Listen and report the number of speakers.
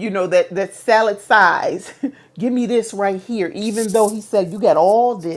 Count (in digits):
1